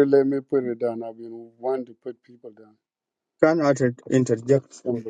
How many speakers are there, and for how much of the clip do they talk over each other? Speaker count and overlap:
two, about 5%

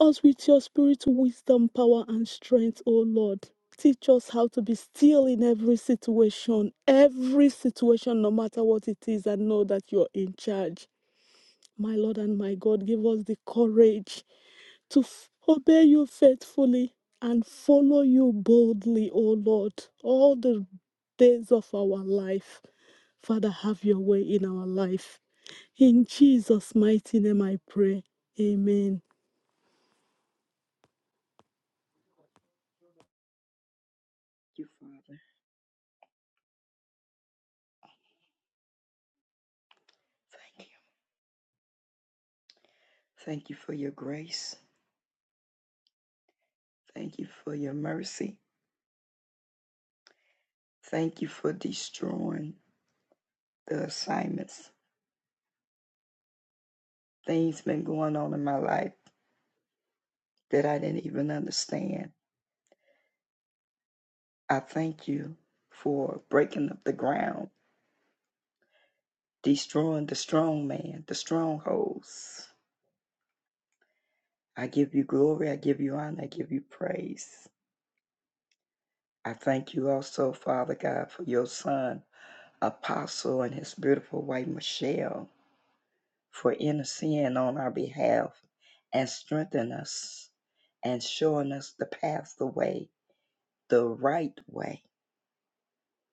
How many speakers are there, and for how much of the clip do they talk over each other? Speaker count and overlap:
two, no overlap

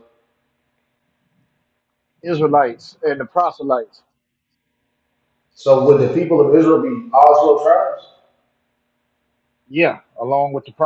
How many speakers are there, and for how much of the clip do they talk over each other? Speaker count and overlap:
two, no overlap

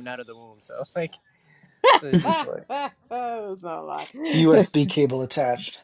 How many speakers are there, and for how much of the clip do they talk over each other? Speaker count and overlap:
three, about 7%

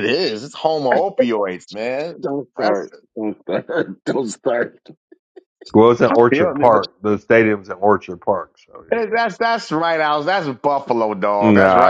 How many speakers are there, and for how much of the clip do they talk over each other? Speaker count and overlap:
three, about 15%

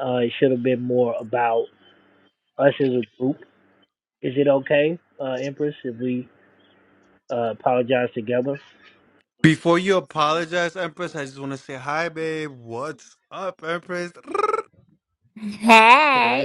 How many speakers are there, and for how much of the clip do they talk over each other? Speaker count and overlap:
three, about 2%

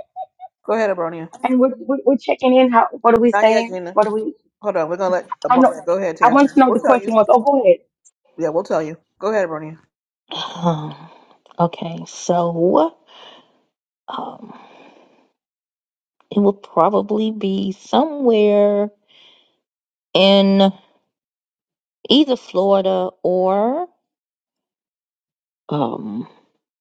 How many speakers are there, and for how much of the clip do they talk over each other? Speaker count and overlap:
three, about 7%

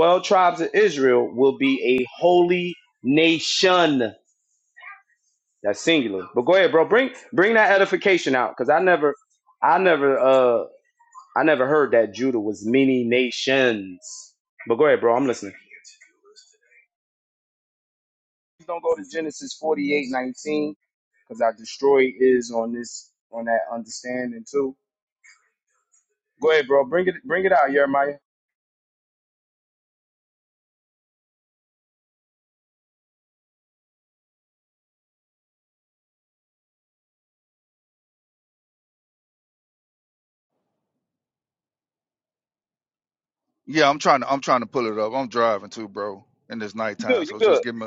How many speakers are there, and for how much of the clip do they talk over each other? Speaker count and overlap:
two, about 1%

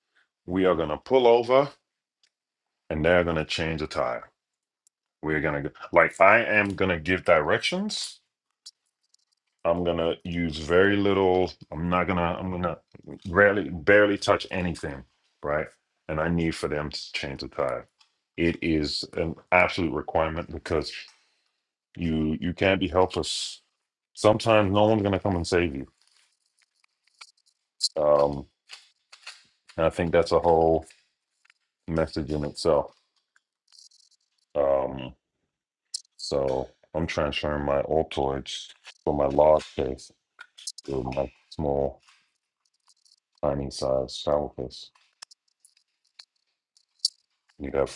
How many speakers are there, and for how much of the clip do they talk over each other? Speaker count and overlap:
one, no overlap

